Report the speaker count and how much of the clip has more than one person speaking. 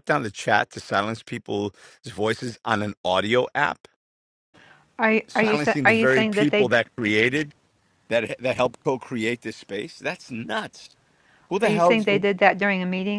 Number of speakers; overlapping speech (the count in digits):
2, about 14%